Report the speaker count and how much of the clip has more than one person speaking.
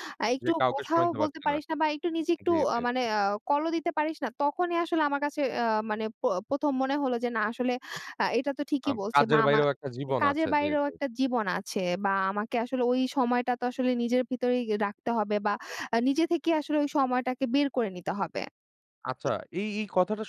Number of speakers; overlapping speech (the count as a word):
two, about 16%